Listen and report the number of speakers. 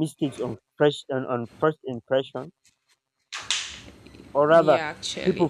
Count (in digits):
2